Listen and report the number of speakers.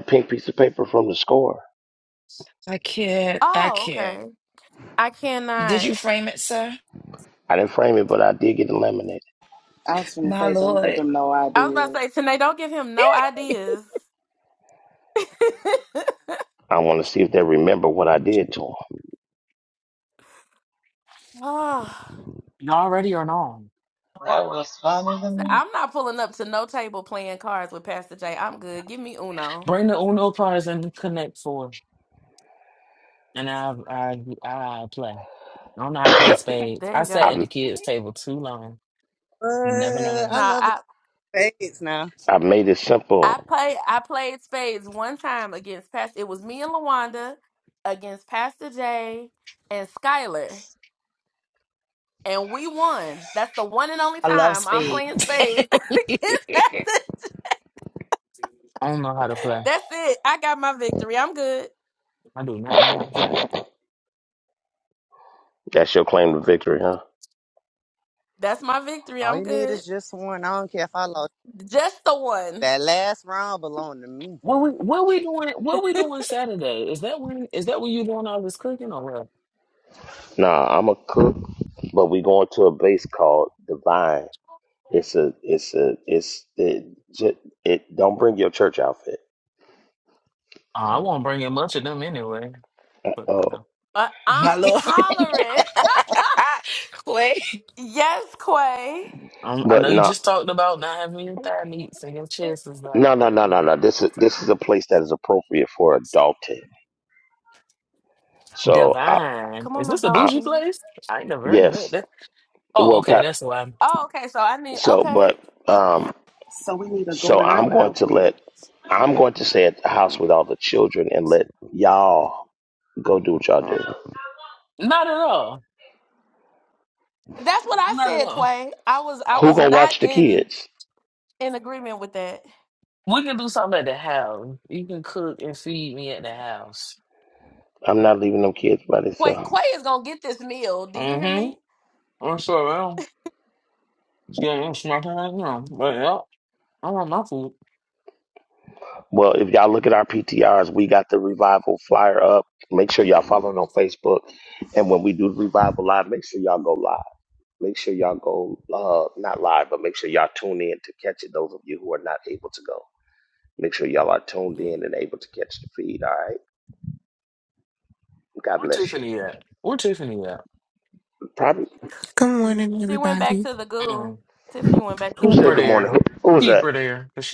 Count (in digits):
8